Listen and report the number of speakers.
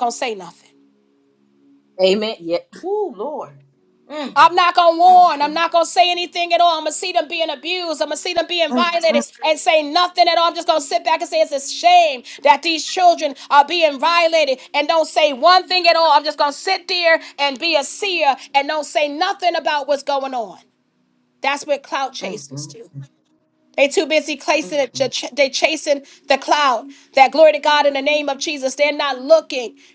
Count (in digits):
2